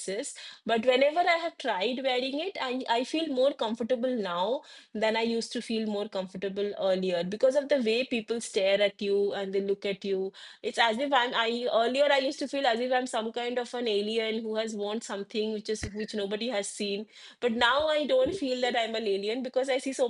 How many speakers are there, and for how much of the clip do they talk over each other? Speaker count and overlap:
1, no overlap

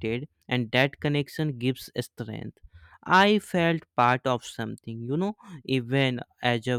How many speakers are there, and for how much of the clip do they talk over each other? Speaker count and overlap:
1, no overlap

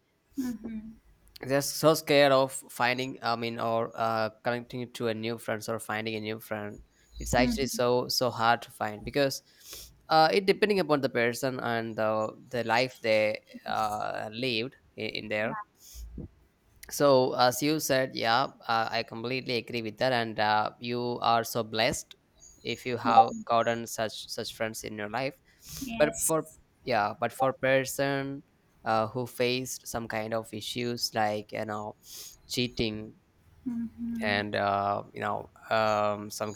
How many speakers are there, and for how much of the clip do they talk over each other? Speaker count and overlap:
2, about 2%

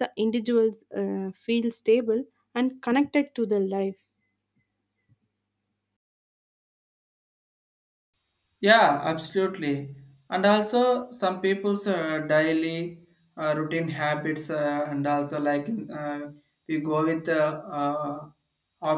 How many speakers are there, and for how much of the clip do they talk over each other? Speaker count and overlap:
2, no overlap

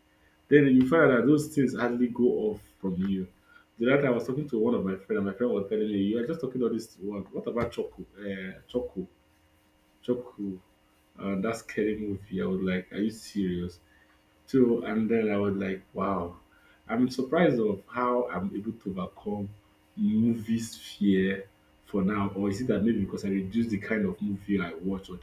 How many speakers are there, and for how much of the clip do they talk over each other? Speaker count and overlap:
1, no overlap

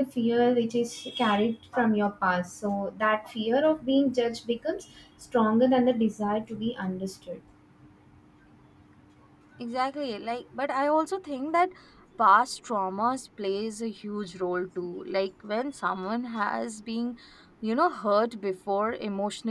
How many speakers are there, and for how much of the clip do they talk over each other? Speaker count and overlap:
2, no overlap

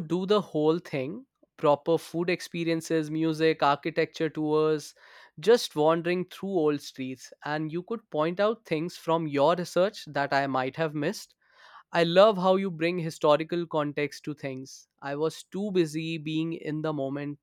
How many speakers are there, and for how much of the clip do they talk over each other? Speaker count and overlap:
1, no overlap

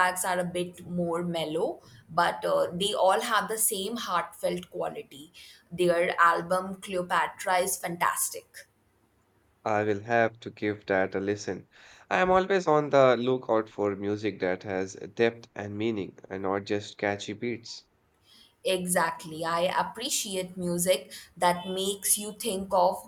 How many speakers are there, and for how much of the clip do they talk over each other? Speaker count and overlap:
2, no overlap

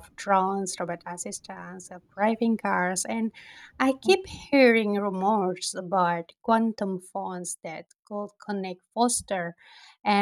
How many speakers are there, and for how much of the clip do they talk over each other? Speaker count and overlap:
1, no overlap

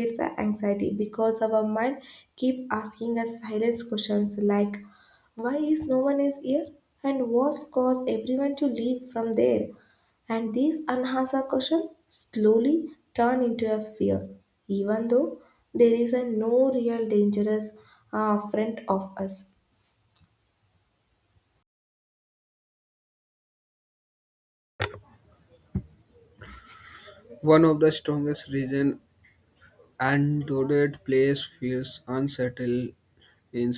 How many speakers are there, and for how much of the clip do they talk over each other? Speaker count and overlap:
2, no overlap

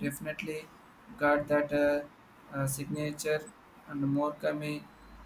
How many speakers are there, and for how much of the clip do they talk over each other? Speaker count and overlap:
1, no overlap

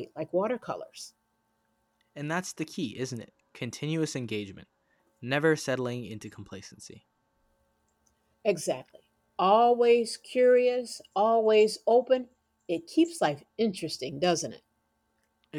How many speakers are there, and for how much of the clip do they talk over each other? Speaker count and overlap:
2, no overlap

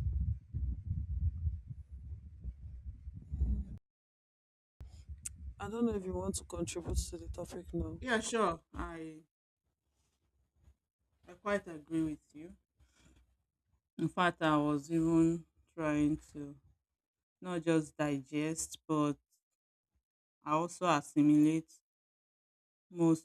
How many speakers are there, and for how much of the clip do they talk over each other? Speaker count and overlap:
2, no overlap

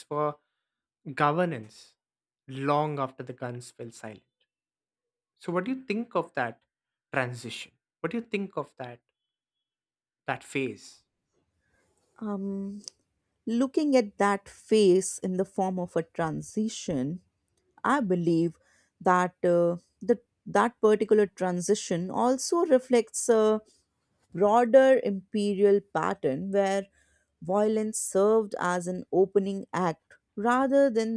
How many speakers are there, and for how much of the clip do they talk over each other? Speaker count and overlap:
2, no overlap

